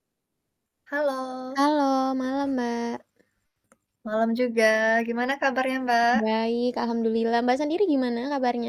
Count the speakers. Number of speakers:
two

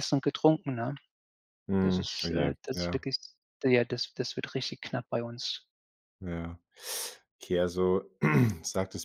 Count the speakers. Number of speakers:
two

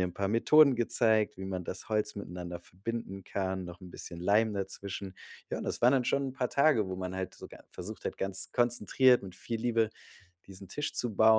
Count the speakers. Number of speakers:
one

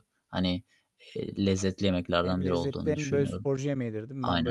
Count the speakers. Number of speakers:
two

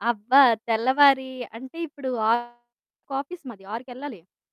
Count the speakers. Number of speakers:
one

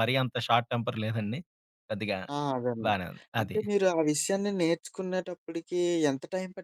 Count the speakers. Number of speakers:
two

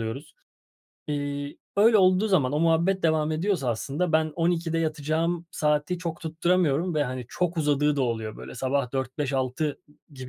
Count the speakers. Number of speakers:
one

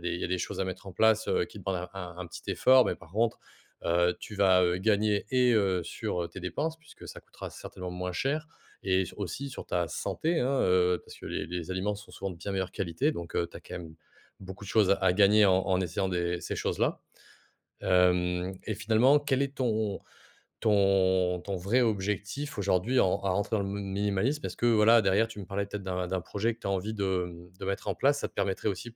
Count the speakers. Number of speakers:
one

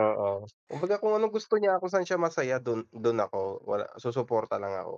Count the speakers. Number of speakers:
one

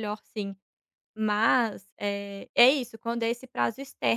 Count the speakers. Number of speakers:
one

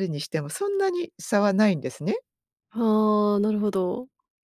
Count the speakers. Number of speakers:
two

